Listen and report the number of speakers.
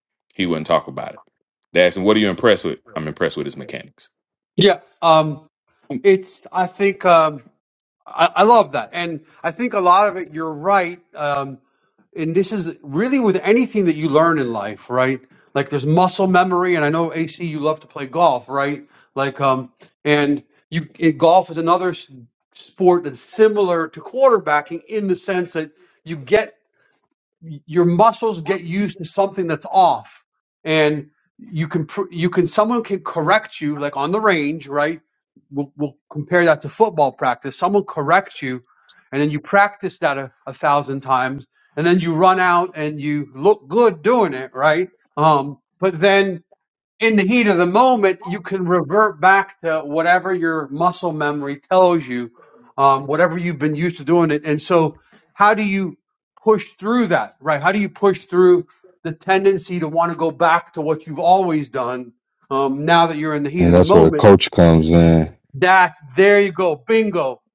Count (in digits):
3